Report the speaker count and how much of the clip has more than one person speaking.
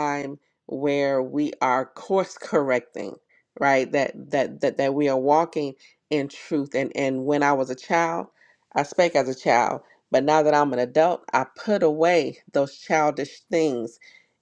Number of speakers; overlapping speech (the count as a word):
one, no overlap